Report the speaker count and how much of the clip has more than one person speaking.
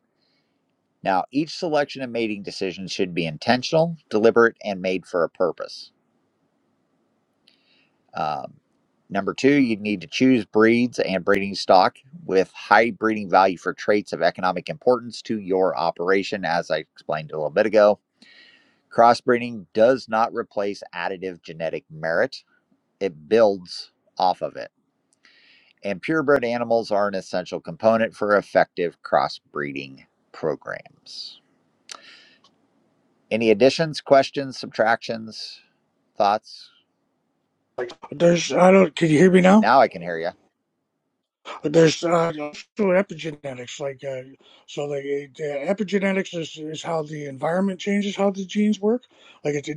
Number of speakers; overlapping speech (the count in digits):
2, under 1%